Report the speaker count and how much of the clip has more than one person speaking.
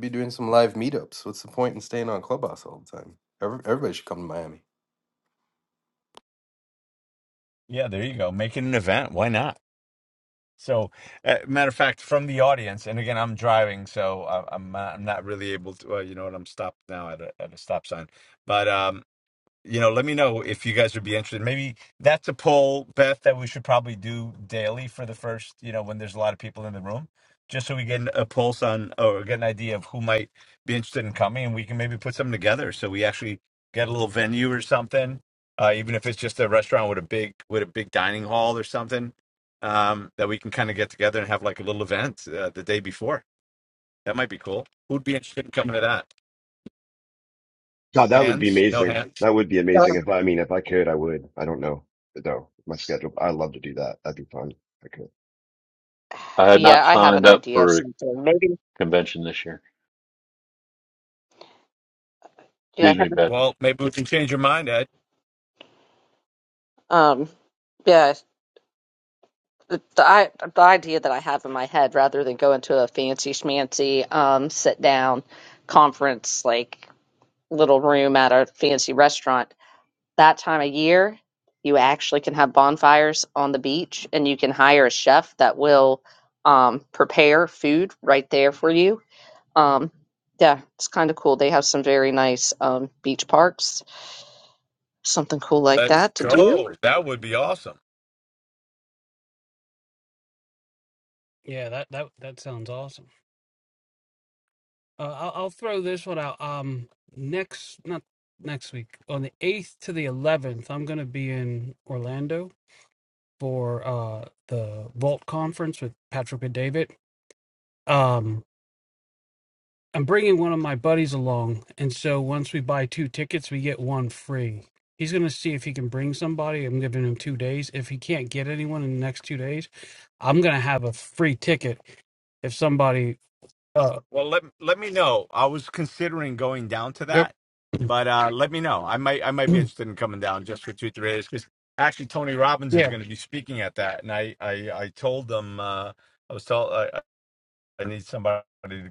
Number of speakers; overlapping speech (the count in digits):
6, about 3%